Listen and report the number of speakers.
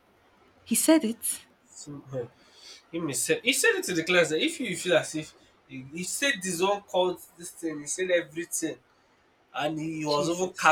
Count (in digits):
2